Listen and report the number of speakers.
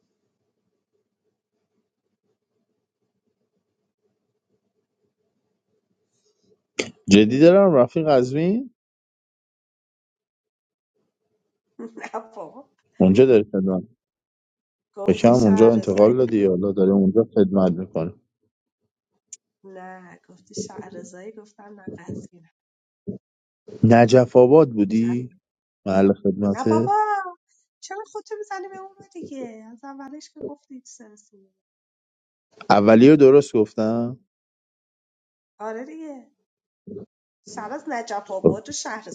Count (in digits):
2